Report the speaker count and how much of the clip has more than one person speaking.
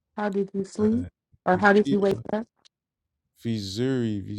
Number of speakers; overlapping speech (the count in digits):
2, about 3%